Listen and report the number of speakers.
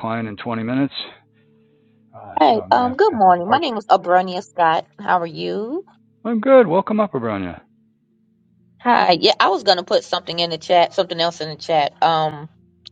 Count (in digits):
2